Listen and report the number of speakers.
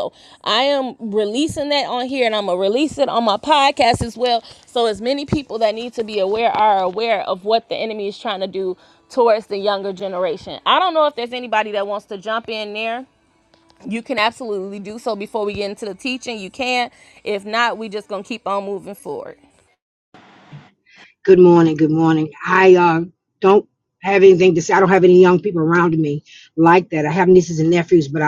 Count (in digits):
2